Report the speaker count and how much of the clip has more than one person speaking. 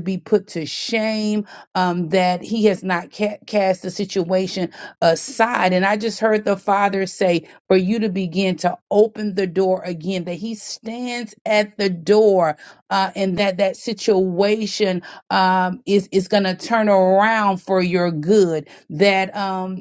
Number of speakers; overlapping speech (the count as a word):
one, no overlap